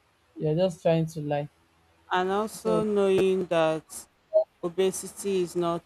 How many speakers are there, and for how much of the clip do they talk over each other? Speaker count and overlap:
two, about 3%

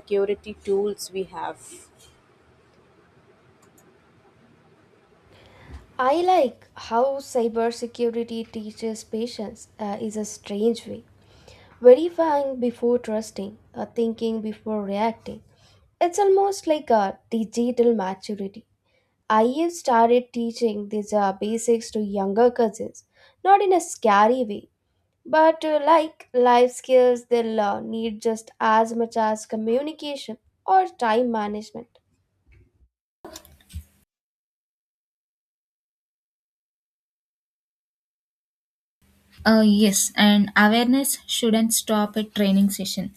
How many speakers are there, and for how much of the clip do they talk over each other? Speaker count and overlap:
three, no overlap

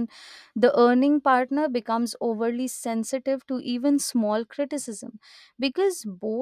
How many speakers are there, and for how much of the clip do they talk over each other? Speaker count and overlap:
one, no overlap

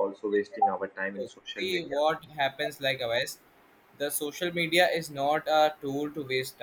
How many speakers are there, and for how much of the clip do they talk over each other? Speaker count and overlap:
two, about 6%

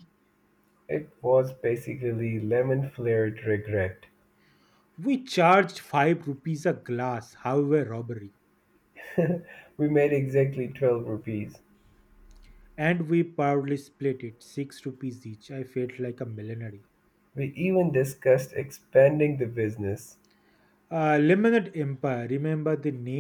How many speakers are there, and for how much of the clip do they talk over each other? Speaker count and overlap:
two, no overlap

